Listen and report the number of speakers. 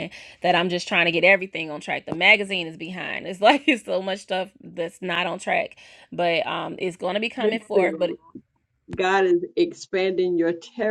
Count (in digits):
2